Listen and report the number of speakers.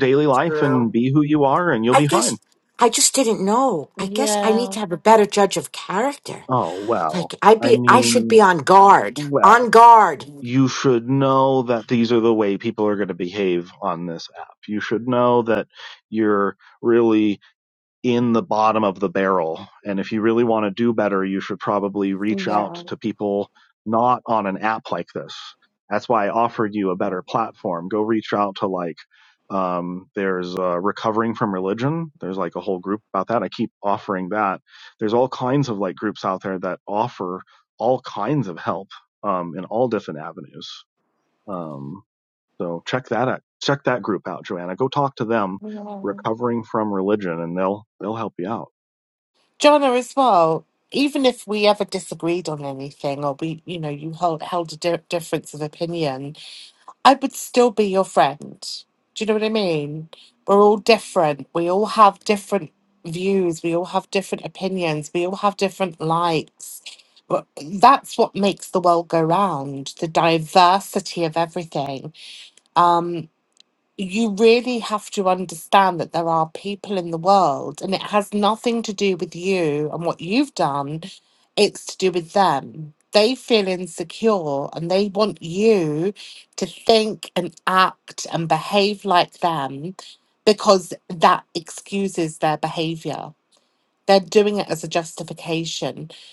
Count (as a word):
three